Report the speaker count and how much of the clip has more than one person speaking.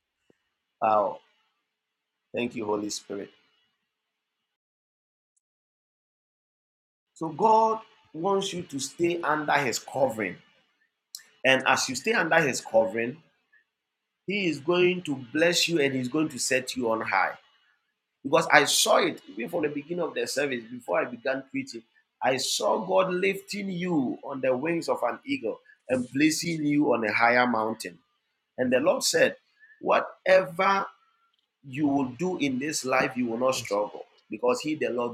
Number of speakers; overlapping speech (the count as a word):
one, no overlap